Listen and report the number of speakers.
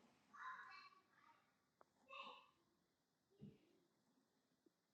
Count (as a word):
zero